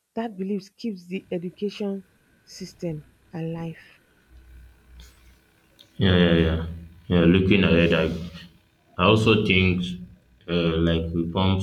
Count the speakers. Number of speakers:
2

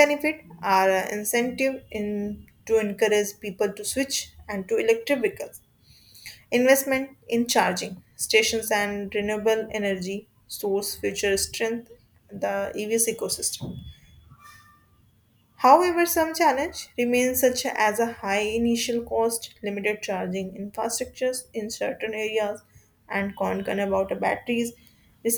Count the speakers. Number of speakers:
1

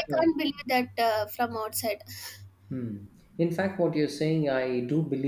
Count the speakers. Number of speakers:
2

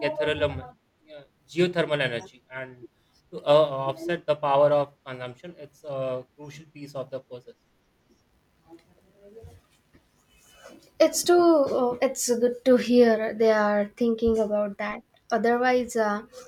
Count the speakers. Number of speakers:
2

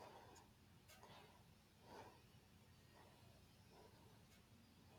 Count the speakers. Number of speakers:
0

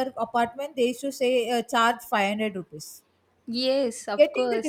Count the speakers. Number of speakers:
2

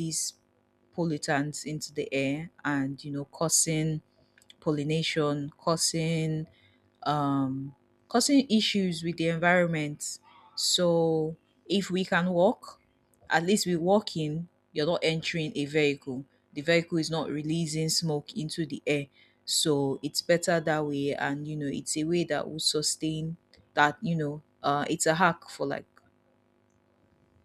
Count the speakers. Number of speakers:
1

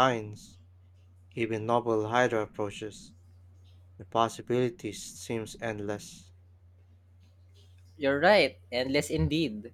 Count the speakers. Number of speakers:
2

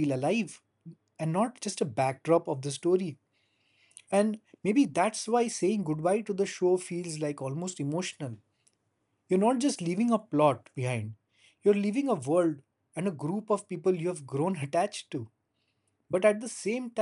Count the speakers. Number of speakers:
1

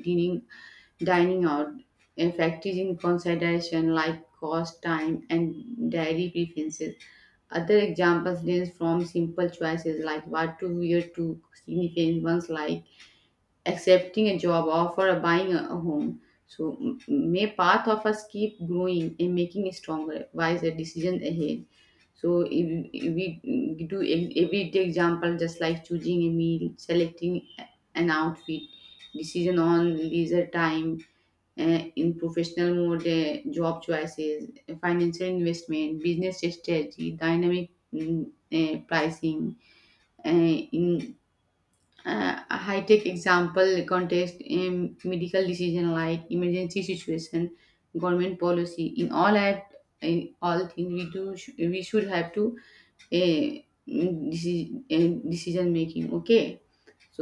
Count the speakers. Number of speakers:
1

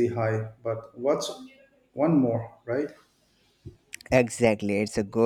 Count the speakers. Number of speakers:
2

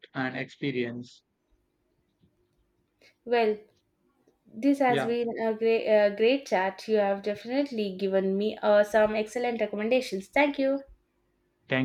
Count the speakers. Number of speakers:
2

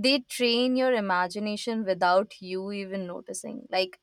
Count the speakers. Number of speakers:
1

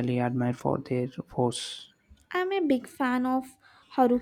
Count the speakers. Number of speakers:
2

